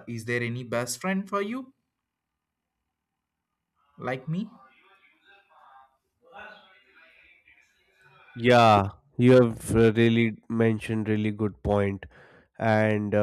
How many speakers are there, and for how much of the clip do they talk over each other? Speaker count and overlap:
two, no overlap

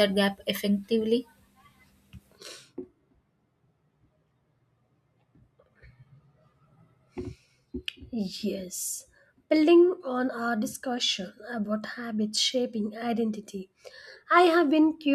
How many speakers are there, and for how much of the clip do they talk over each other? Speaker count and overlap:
two, no overlap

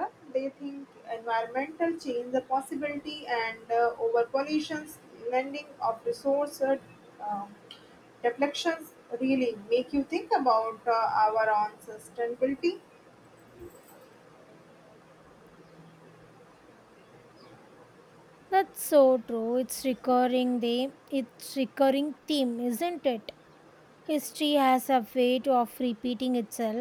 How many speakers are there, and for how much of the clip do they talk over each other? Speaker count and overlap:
two, no overlap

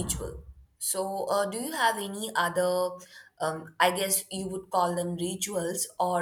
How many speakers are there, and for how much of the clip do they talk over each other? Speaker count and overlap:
one, no overlap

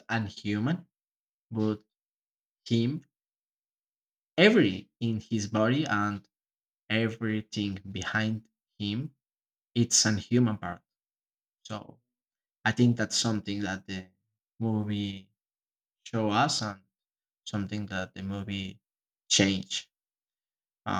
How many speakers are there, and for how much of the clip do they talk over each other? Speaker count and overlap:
one, no overlap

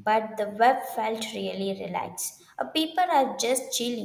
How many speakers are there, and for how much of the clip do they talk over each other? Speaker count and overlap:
one, no overlap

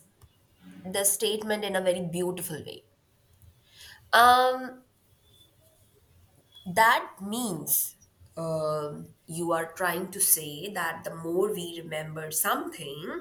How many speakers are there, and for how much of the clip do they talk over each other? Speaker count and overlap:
one, no overlap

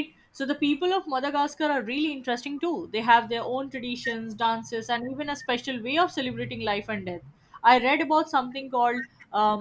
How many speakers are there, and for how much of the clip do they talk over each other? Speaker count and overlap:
one, no overlap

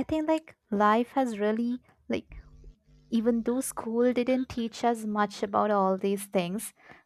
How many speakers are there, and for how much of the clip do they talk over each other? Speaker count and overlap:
one, no overlap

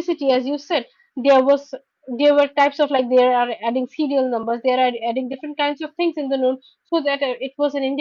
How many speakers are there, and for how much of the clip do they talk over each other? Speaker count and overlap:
one, no overlap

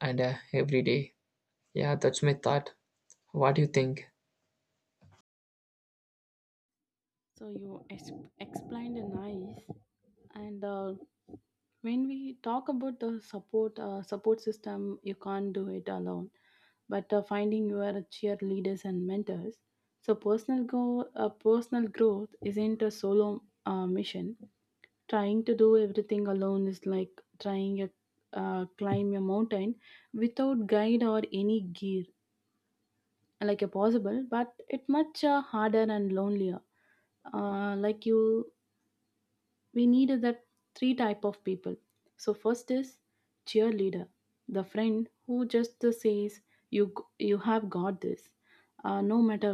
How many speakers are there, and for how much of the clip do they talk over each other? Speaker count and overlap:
two, no overlap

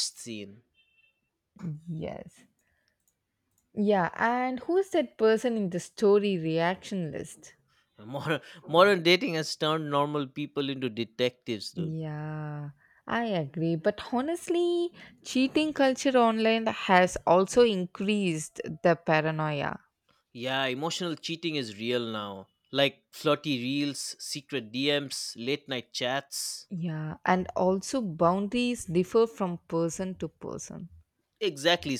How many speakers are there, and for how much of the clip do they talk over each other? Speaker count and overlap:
two, under 1%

